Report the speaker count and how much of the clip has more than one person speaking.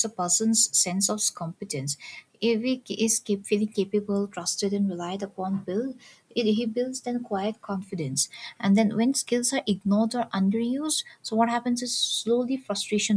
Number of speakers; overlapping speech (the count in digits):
1, no overlap